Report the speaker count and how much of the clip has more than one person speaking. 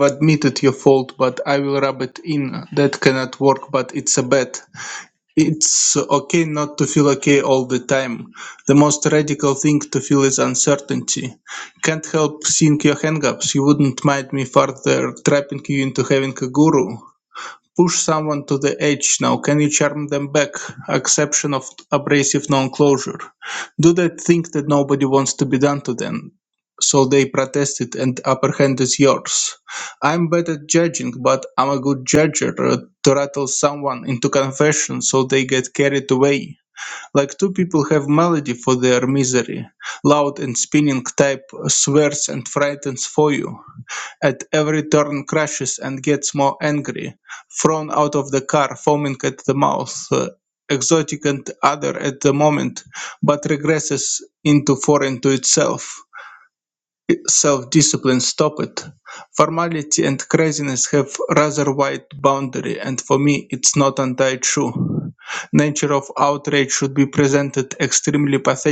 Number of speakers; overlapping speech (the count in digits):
1, no overlap